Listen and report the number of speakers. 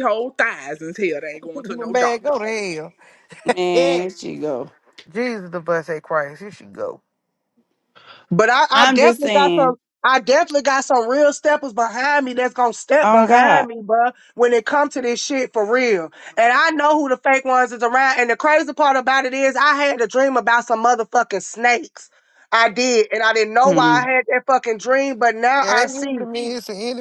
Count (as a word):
four